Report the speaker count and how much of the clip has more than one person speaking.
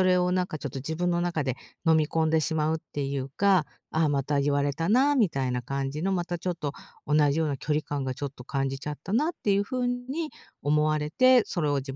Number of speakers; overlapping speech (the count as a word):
one, no overlap